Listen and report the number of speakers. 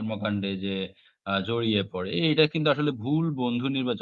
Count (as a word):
one